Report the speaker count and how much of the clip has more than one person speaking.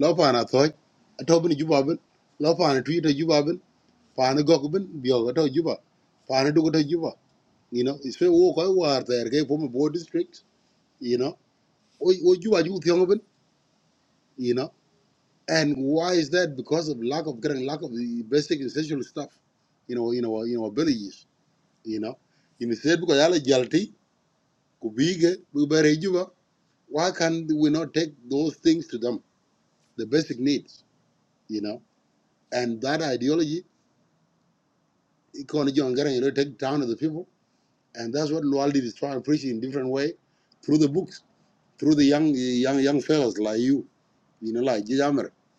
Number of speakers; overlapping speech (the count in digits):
1, no overlap